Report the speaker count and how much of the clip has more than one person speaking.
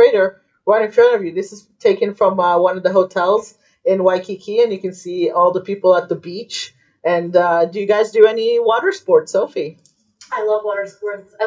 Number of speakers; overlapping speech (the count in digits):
2, no overlap